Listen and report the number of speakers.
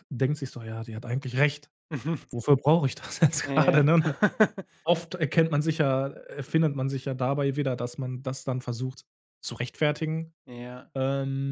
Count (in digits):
2